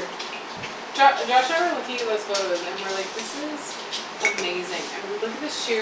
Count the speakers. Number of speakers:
one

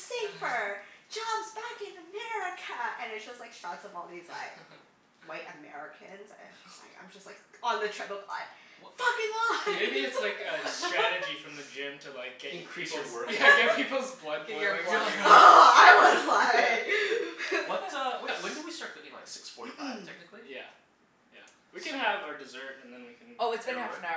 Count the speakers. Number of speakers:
four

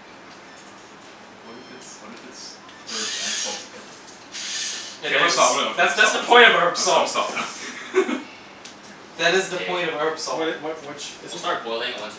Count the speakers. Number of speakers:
four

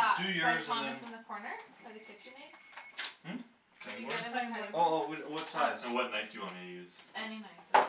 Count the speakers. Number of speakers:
three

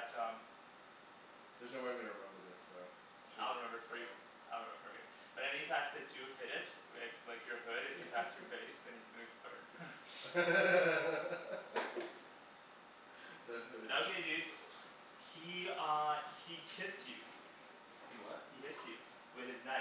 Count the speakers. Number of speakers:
two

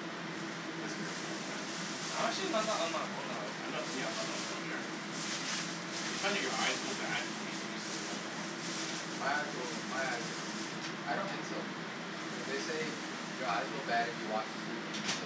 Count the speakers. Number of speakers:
three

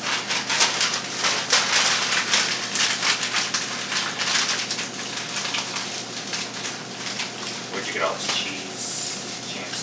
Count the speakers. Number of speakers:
one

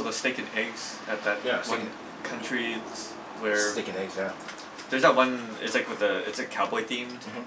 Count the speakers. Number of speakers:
two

